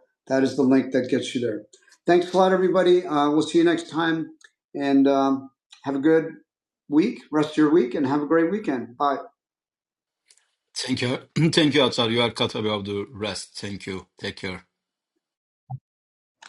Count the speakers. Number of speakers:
2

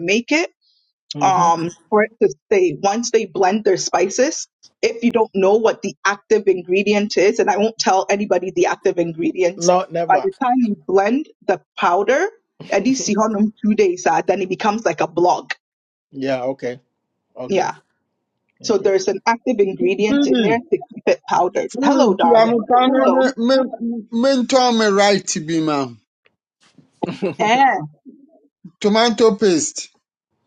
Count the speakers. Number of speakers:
3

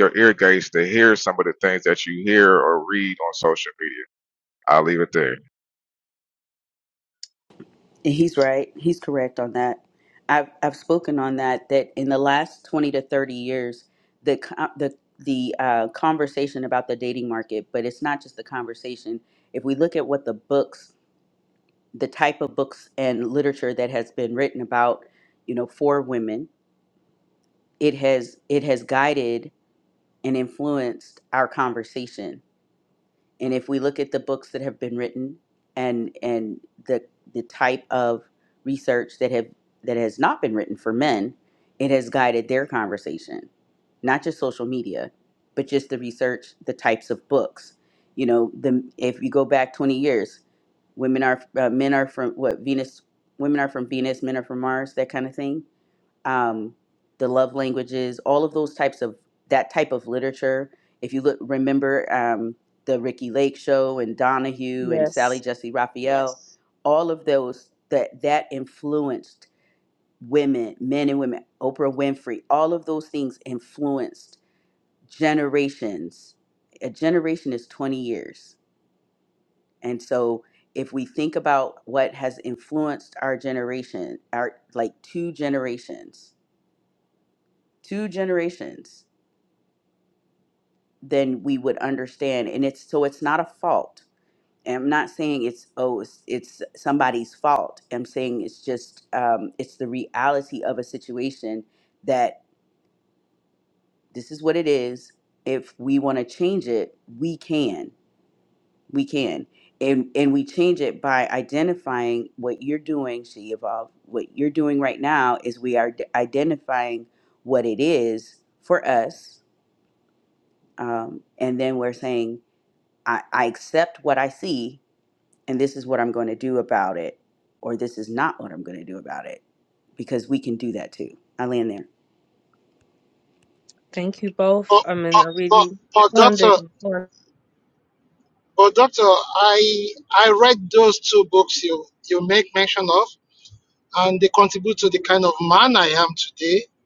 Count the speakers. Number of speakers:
4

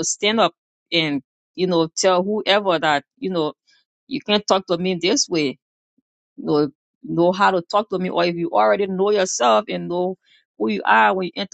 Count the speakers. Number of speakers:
1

